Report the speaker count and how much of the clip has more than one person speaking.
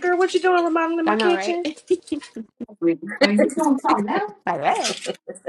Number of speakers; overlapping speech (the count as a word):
three, about 11%